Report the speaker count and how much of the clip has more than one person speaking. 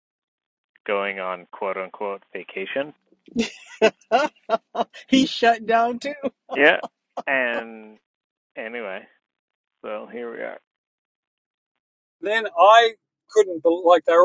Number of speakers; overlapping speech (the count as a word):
three, no overlap